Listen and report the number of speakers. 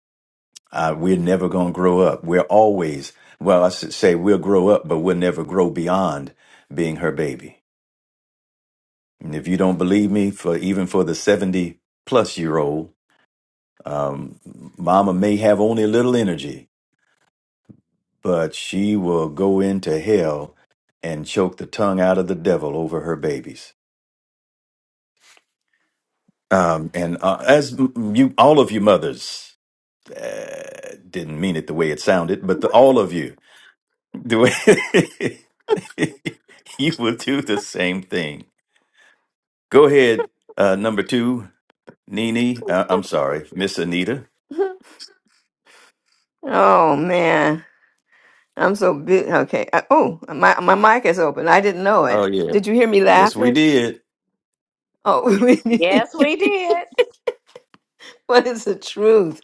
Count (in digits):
3